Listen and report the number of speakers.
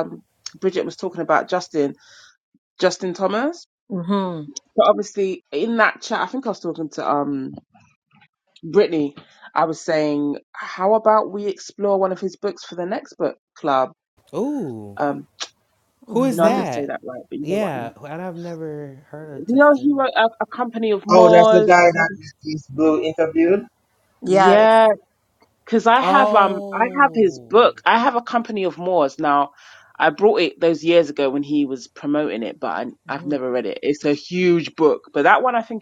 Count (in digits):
4